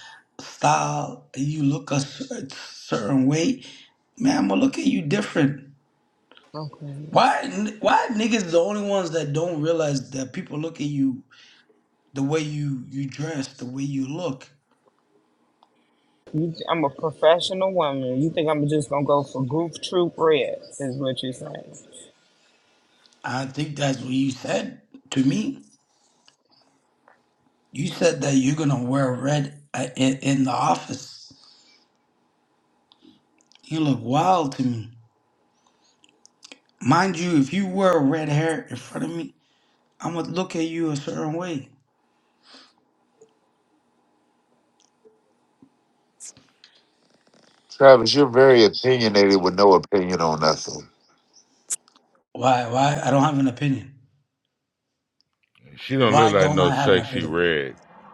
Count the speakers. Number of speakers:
four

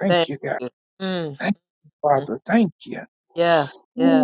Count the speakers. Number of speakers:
two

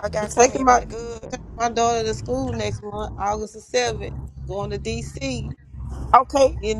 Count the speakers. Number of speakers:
two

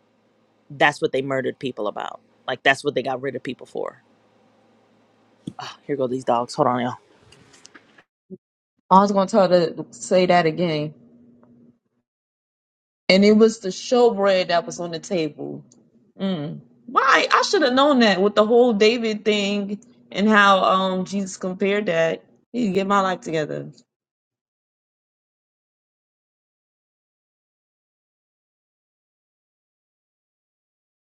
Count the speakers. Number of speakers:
two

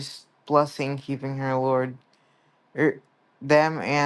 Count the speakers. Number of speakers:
one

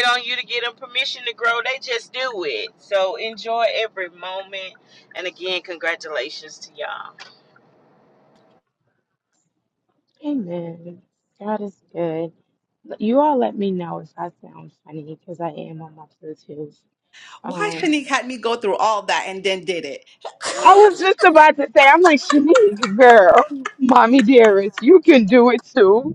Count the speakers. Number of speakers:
three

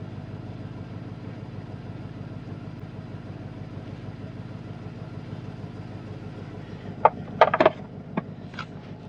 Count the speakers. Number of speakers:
zero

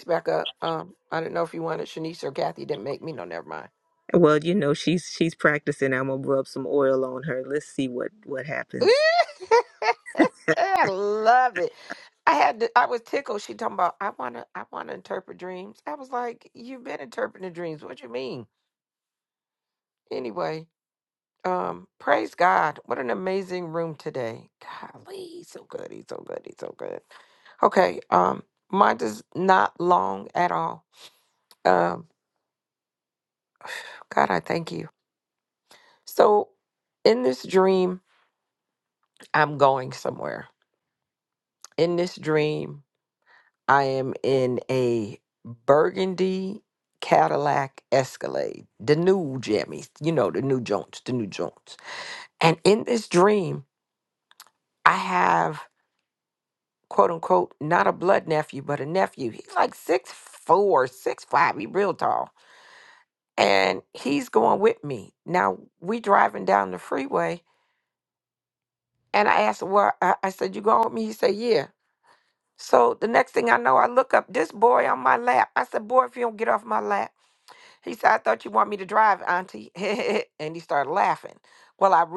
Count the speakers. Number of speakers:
two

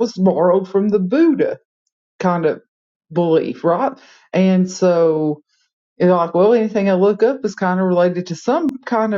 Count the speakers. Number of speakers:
one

